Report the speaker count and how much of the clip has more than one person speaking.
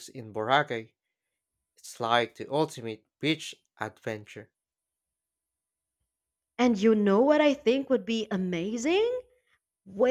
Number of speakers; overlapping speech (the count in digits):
2, no overlap